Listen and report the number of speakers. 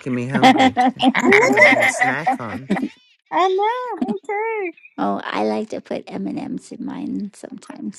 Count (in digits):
3